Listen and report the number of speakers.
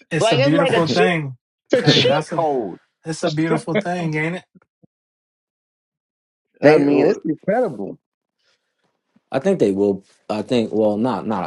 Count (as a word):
three